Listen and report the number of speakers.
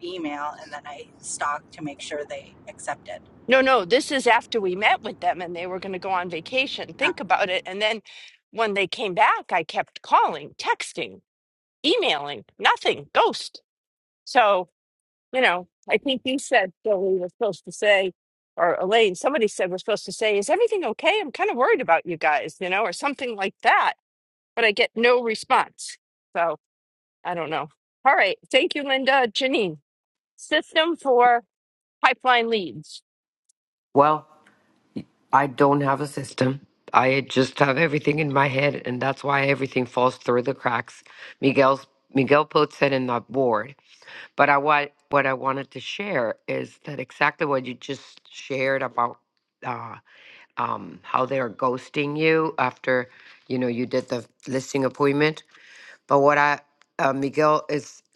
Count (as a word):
three